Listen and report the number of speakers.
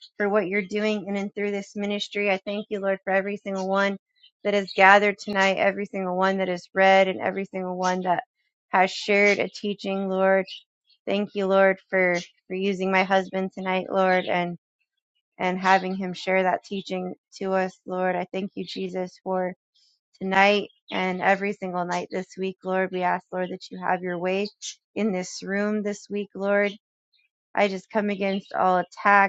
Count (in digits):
1